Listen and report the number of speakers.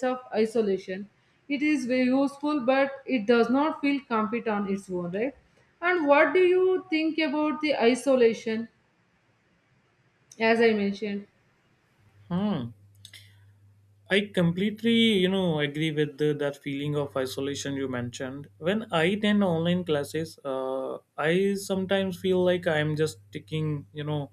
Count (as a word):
two